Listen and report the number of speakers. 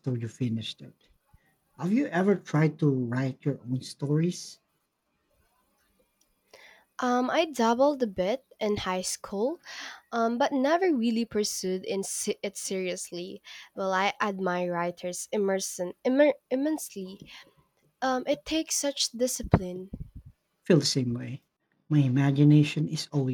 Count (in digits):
2